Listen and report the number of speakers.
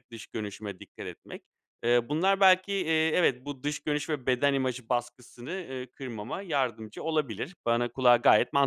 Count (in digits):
1